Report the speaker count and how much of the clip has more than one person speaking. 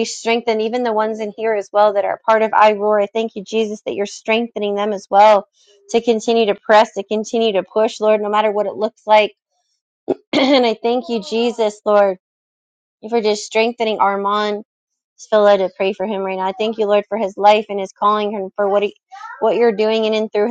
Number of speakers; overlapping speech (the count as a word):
one, no overlap